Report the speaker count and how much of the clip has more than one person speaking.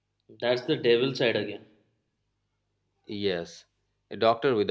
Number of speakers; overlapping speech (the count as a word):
two, no overlap